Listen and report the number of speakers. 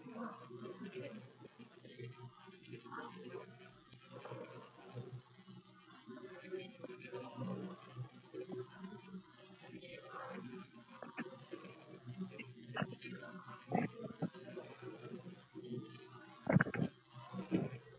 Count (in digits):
0